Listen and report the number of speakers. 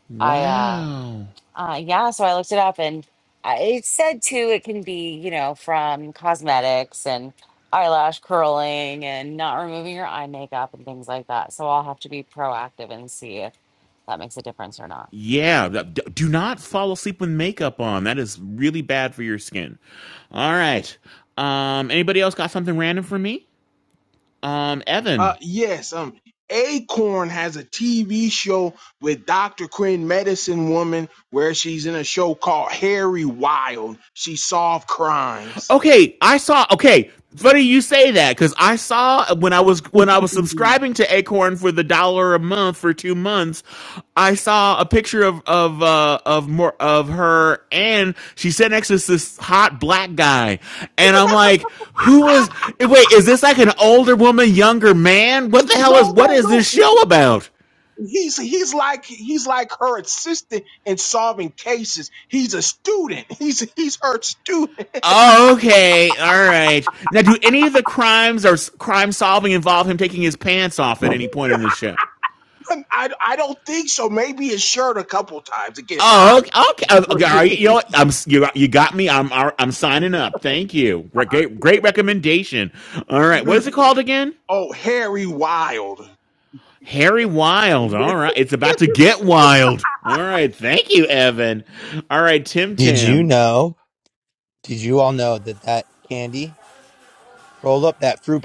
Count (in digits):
4